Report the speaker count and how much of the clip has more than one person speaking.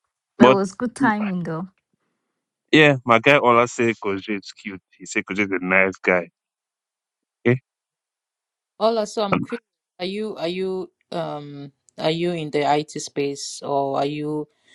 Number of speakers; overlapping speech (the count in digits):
3, about 1%